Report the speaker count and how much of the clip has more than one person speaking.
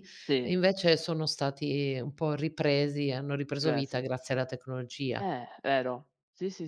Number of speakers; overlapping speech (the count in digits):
2, about 7%